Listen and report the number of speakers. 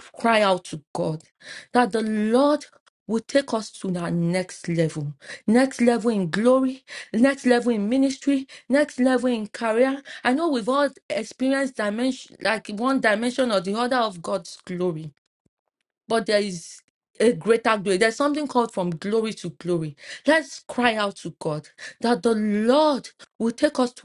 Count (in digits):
1